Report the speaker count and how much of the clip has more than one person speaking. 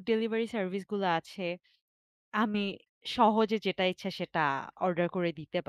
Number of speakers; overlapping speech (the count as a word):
one, no overlap